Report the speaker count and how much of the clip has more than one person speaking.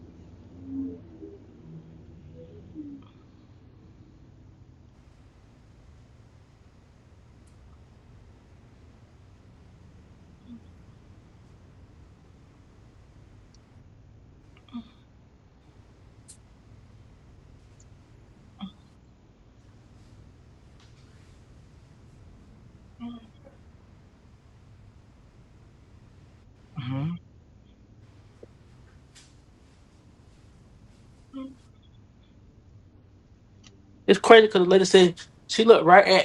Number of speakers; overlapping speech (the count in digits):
1, no overlap